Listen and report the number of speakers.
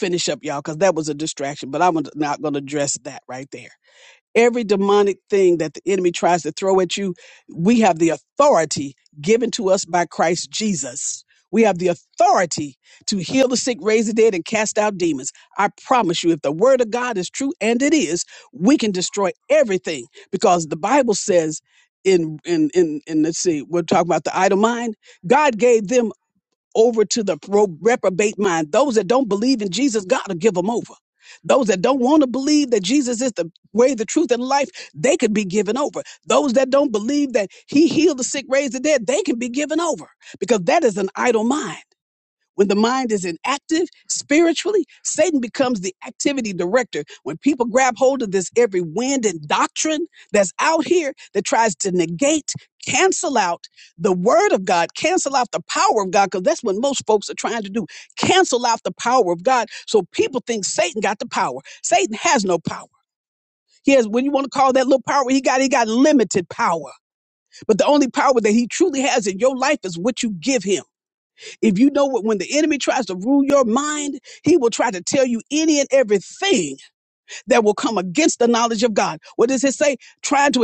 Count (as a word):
one